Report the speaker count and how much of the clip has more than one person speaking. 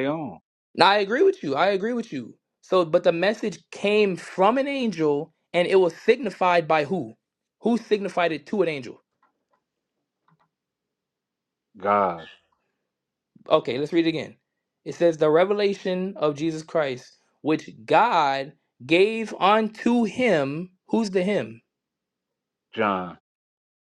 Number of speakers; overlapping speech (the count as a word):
two, no overlap